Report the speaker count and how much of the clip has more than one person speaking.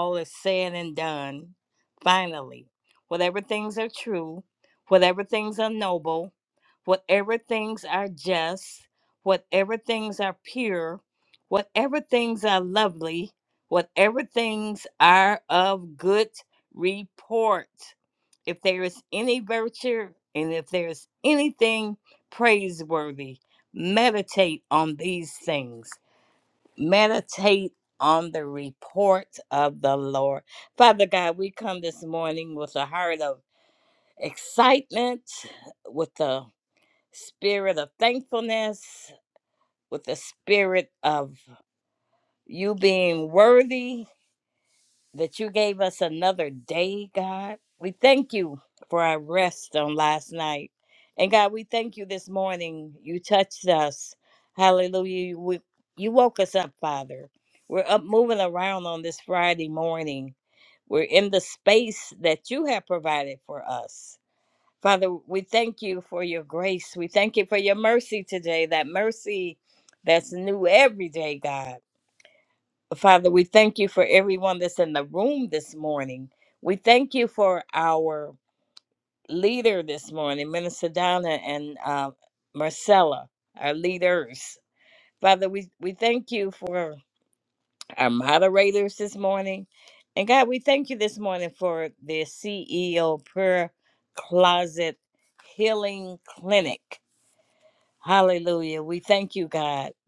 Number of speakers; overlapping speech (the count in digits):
1, no overlap